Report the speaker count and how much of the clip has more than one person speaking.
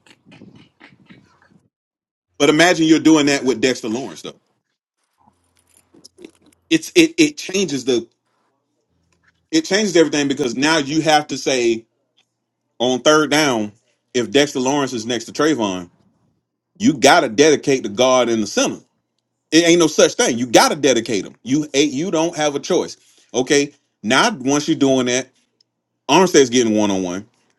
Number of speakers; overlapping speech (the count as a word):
one, no overlap